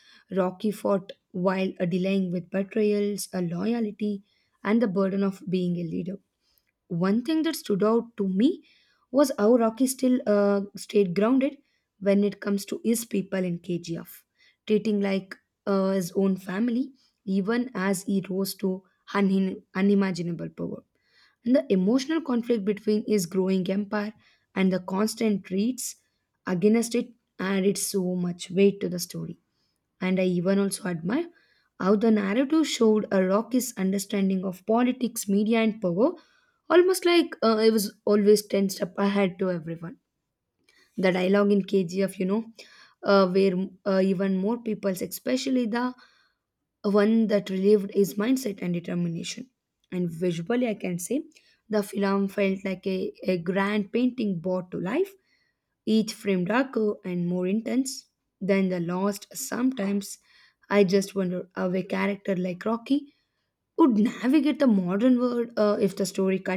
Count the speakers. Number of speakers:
1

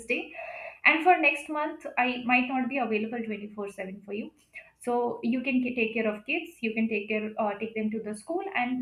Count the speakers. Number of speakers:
1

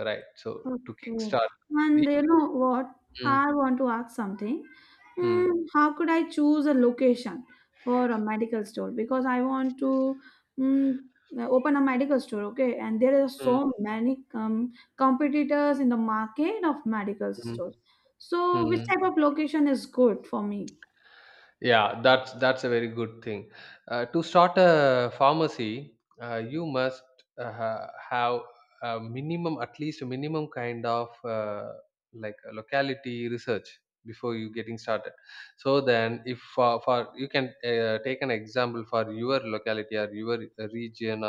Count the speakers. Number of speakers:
2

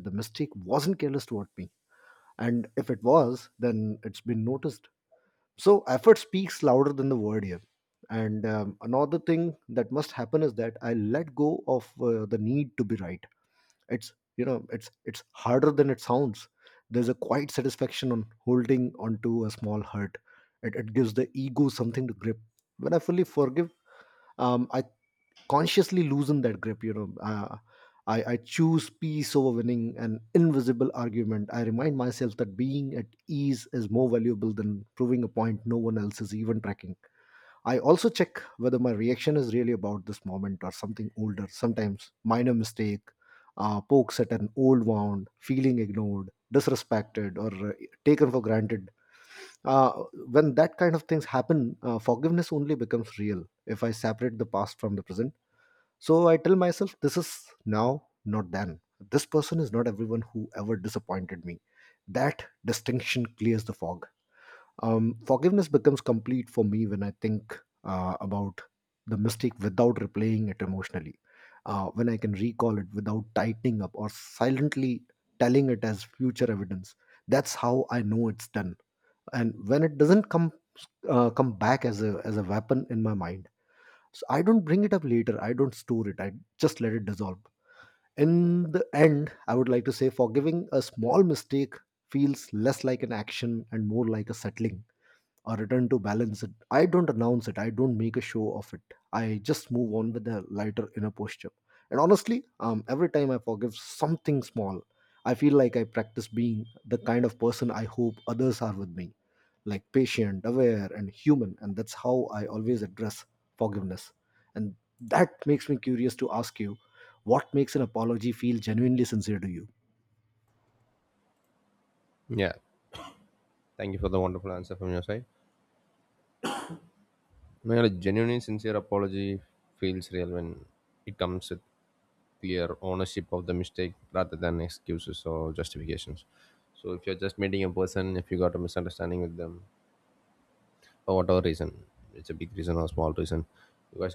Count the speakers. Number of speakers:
2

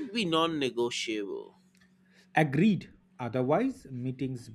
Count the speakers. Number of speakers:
2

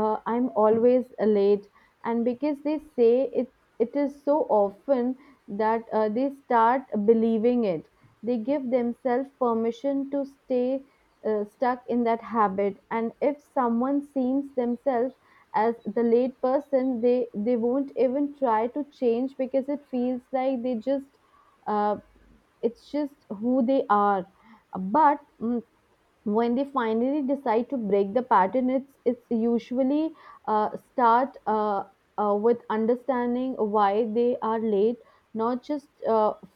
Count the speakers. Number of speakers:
1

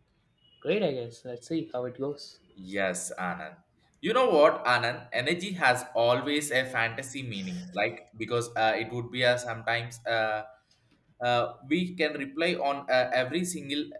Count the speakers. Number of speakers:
2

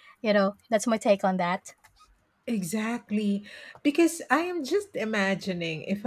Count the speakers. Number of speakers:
2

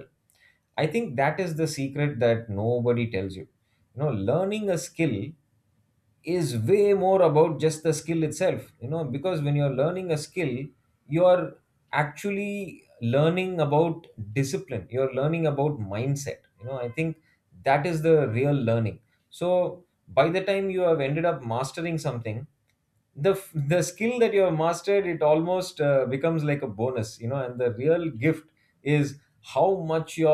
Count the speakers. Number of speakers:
1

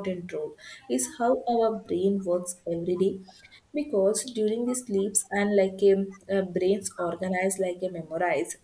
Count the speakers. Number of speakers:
1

